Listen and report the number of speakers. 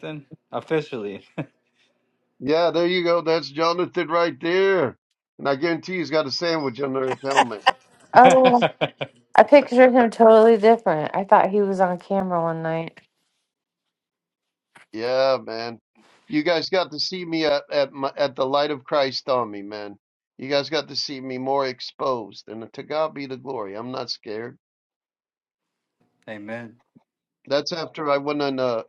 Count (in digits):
3